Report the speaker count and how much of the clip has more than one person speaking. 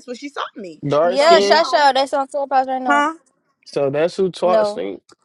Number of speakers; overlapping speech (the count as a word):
three, about 24%